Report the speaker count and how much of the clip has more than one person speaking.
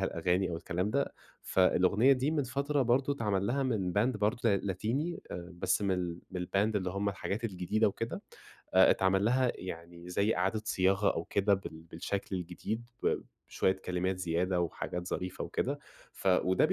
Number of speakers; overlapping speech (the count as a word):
one, no overlap